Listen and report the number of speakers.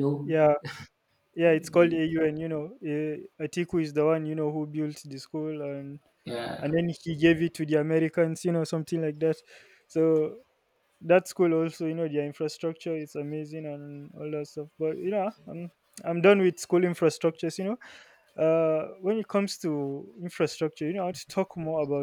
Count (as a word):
two